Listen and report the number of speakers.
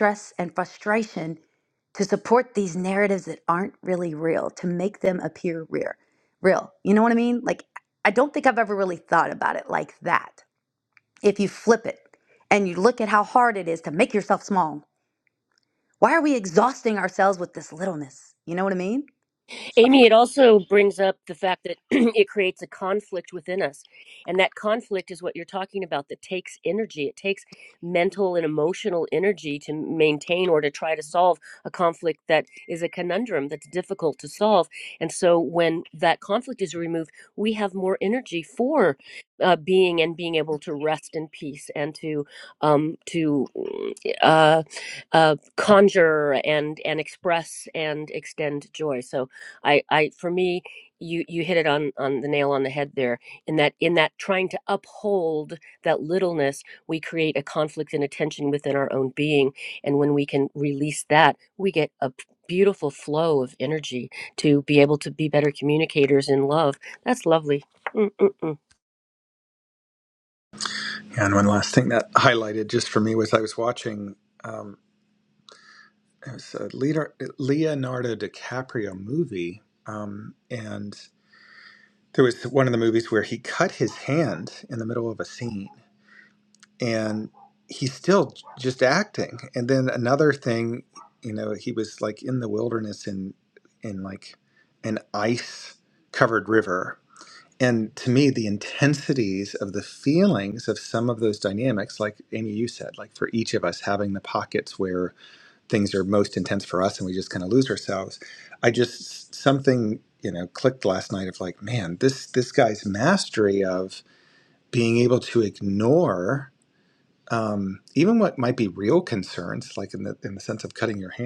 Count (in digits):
3